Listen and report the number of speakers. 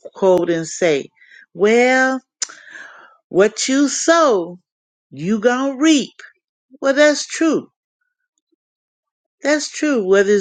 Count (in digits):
1